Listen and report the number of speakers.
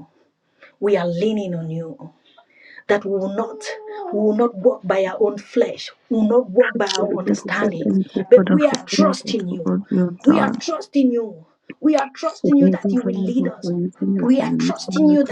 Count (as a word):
two